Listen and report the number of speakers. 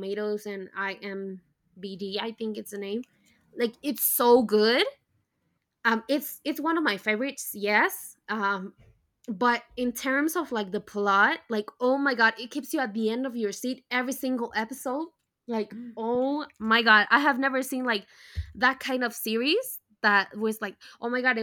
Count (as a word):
one